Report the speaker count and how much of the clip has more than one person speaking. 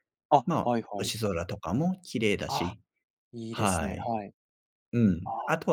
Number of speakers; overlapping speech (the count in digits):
2, about 30%